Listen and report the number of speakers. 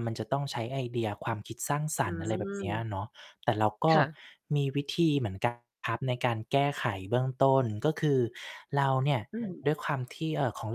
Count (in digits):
2